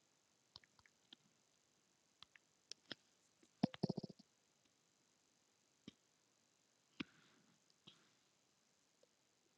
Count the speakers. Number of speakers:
0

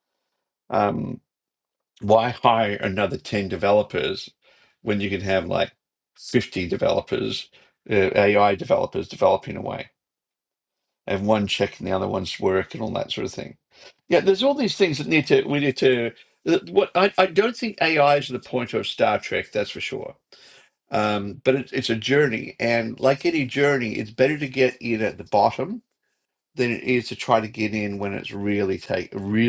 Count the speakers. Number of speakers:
1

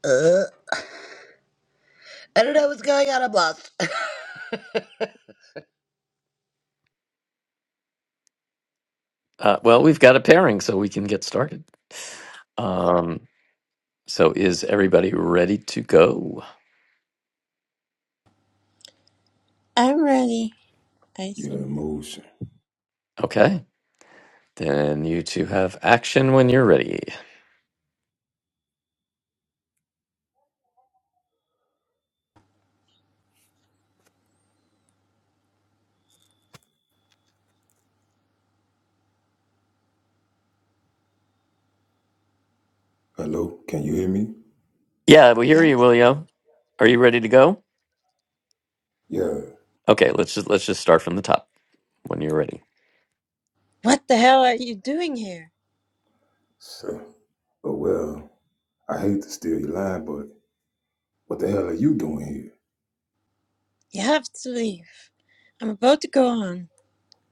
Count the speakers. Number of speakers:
4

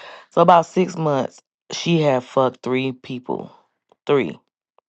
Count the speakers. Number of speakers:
1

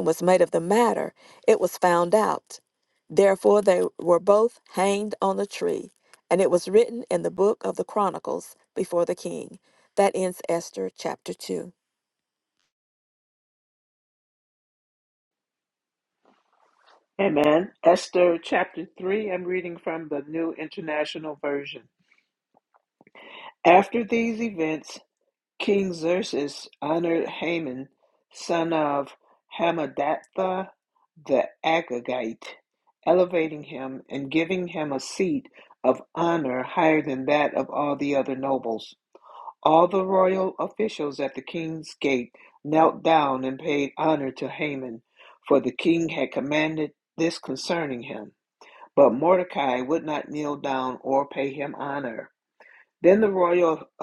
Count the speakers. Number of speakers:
2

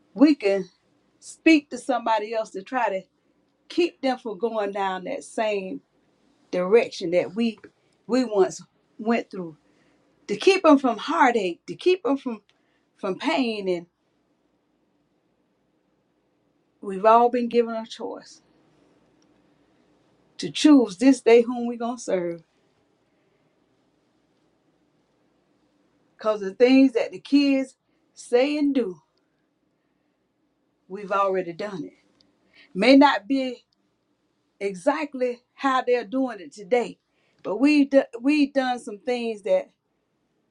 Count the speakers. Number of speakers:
1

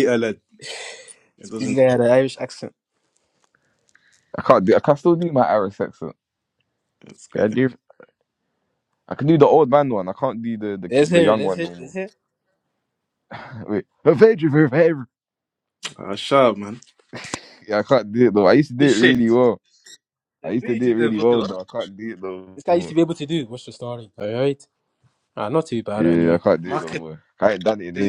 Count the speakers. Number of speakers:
3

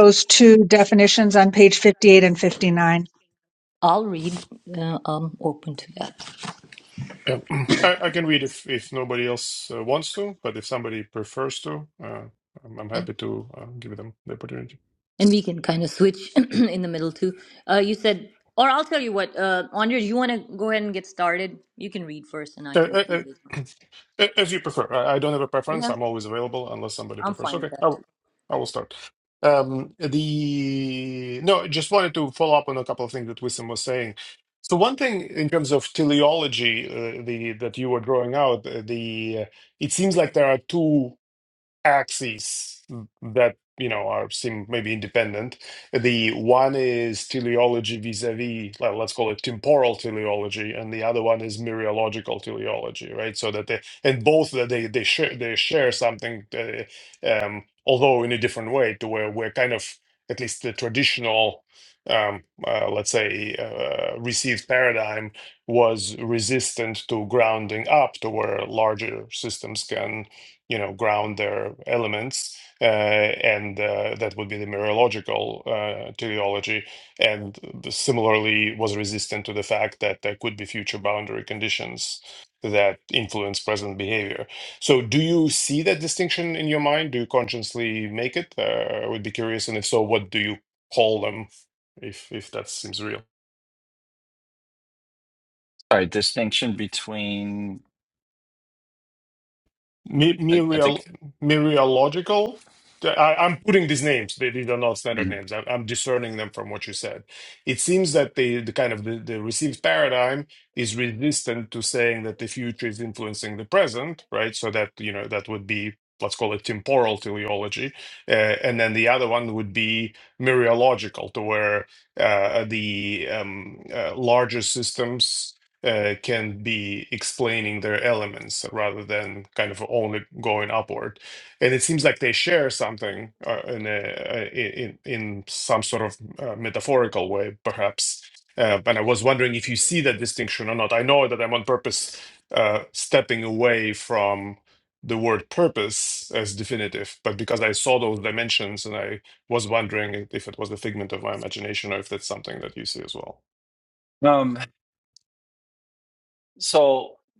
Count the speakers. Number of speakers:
4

